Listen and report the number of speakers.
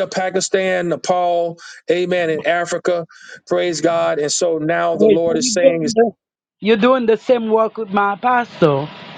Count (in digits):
2